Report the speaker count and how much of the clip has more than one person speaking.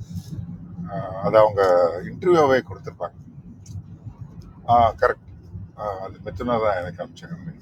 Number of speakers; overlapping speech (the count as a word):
one, no overlap